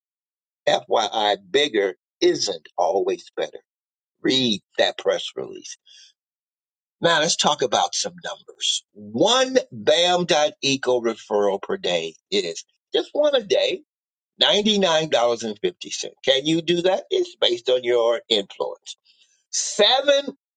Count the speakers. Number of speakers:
1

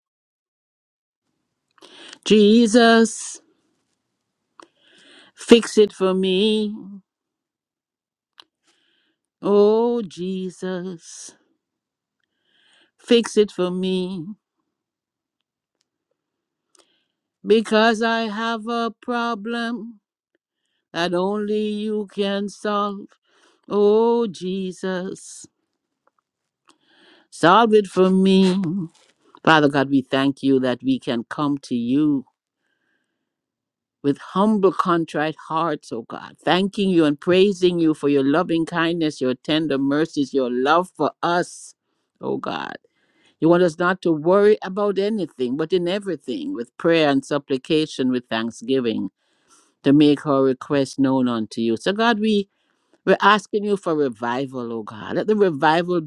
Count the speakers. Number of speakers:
1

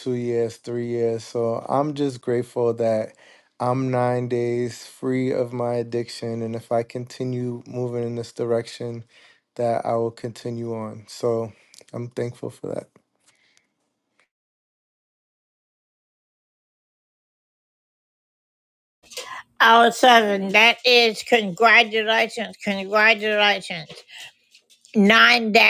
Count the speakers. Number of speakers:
2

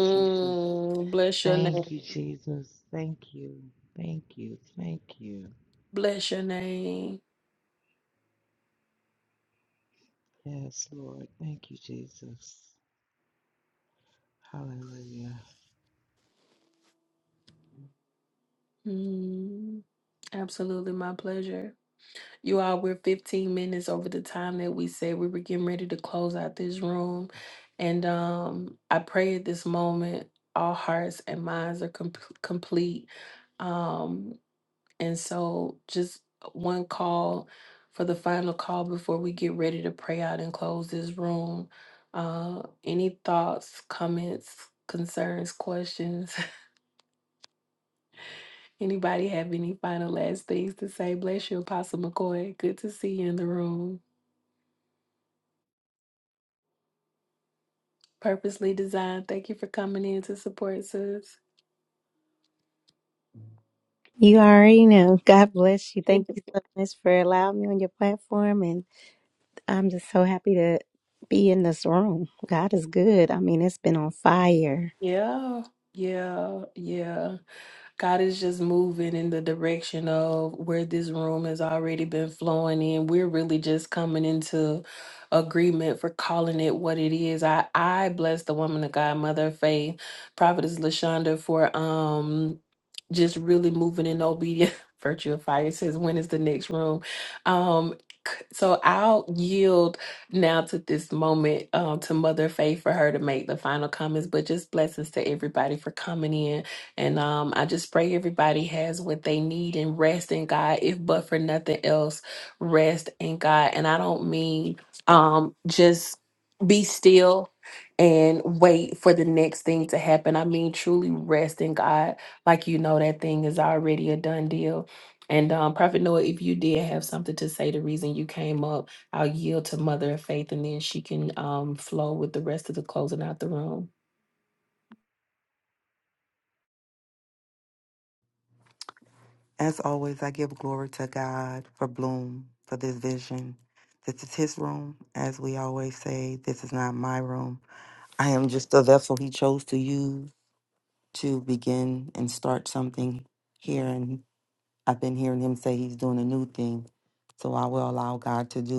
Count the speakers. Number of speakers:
4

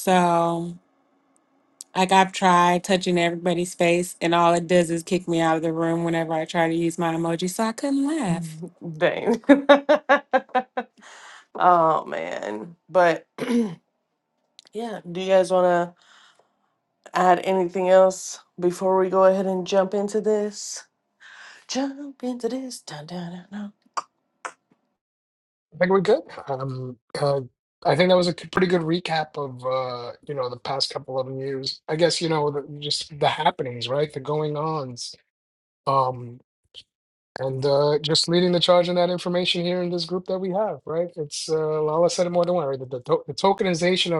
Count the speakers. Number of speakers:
3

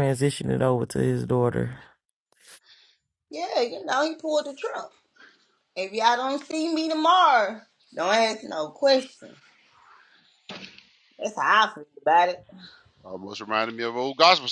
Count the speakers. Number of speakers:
3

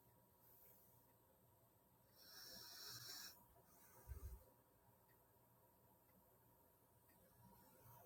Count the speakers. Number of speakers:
0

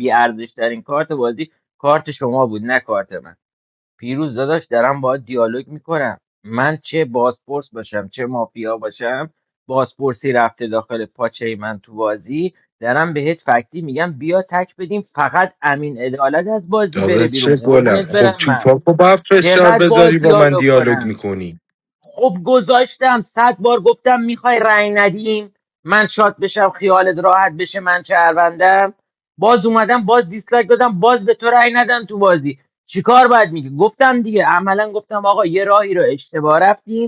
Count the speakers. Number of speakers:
2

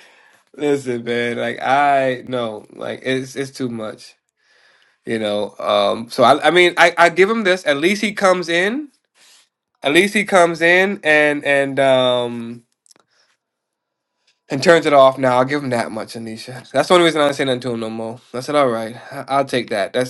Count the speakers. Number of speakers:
1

